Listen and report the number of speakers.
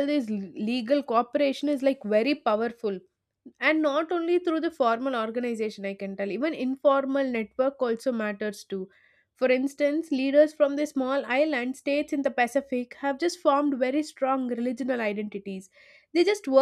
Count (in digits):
1